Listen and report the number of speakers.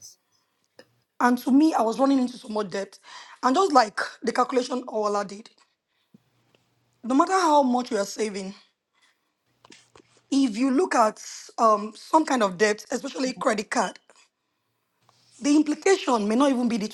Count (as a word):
one